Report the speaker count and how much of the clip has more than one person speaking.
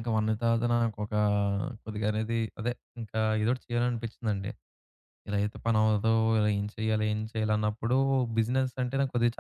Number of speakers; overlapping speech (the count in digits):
1, no overlap